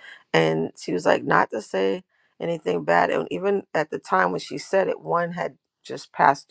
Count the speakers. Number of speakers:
1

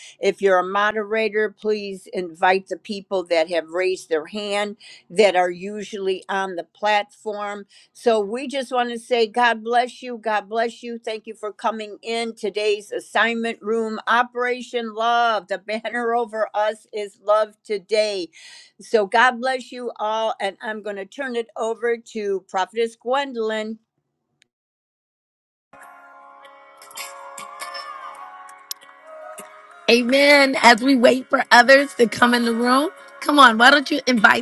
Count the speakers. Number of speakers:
2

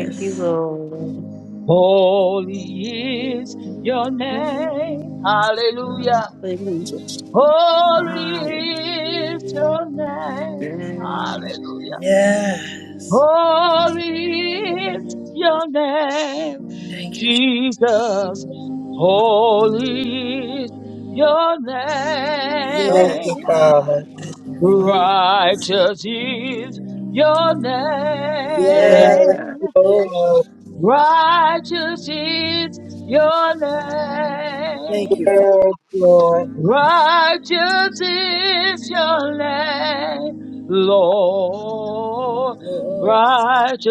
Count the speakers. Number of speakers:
5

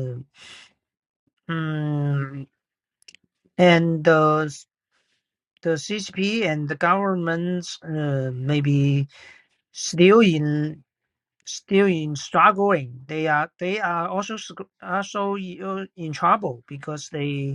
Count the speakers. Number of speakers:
1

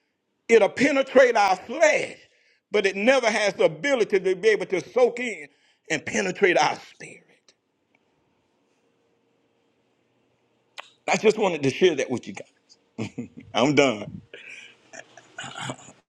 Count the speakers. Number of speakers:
1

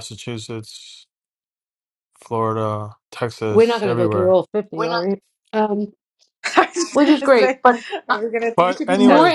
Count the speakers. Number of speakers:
3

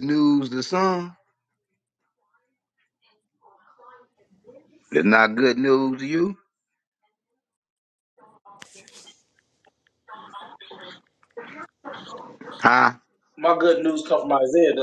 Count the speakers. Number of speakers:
2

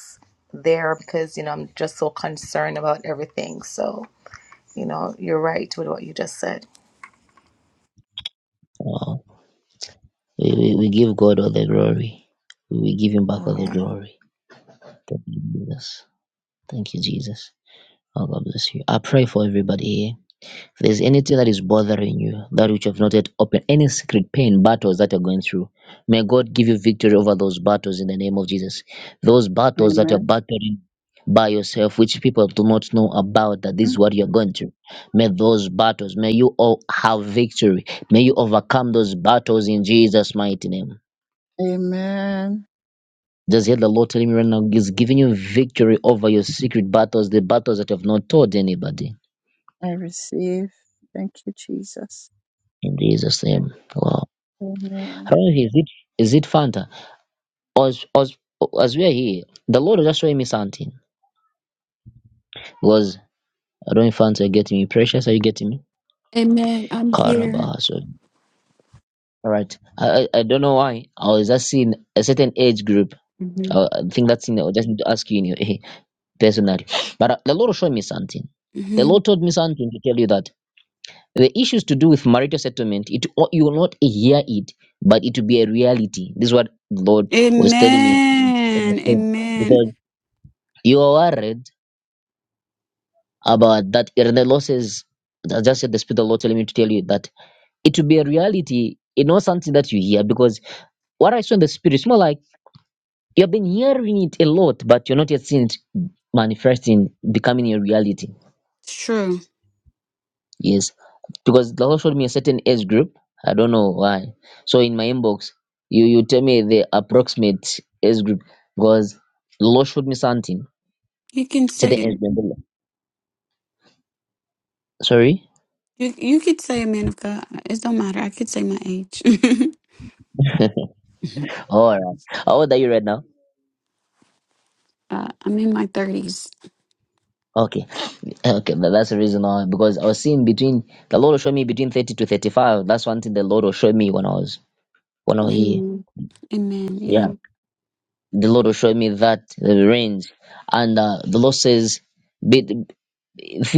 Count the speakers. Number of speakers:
4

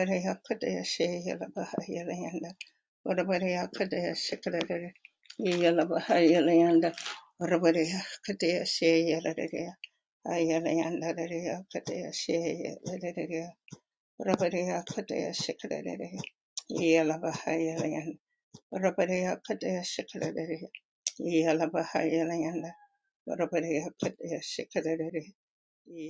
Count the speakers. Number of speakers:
1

